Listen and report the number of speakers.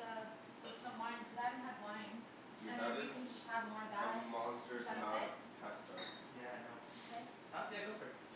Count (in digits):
3